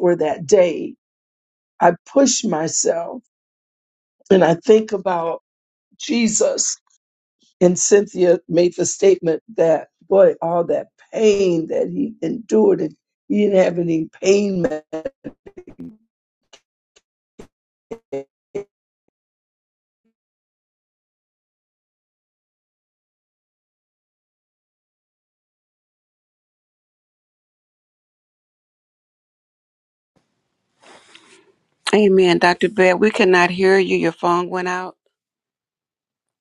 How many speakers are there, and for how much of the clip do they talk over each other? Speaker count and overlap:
2, no overlap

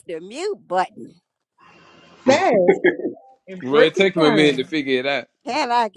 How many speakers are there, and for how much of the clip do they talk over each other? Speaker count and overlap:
3, about 16%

